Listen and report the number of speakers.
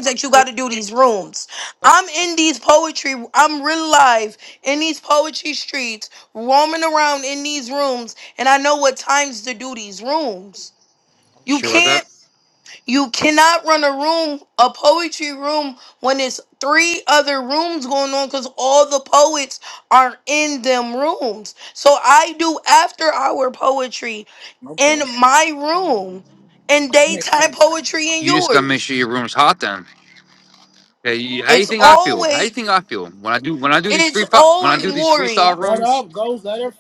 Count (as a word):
three